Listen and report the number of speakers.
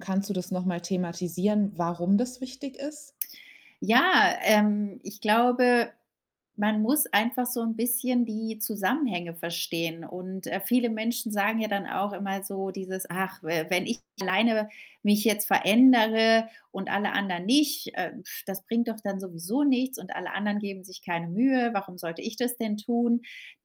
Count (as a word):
two